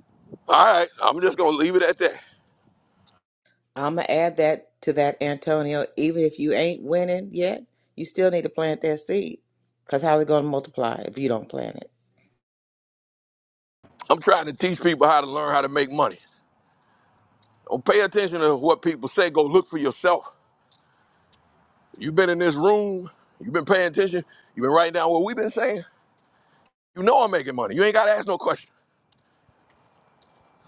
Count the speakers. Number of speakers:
two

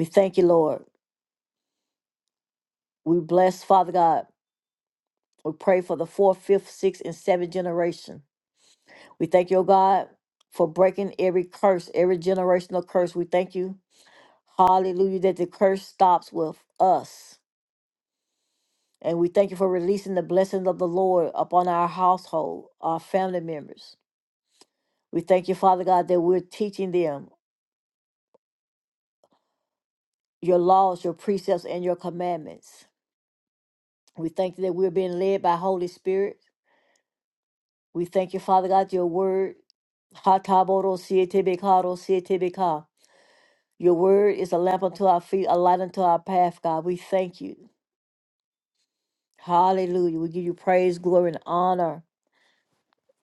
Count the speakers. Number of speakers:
one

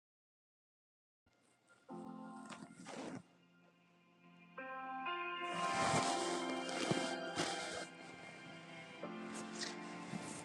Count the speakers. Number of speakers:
zero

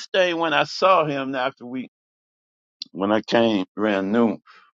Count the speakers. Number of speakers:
one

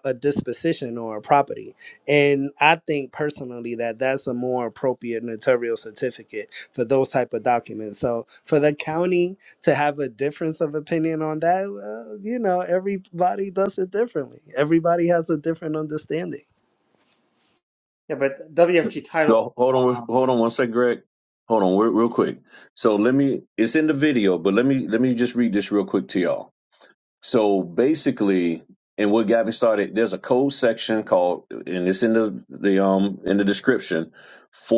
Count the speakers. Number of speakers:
three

